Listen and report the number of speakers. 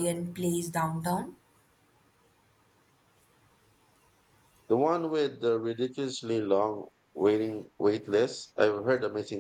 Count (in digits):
2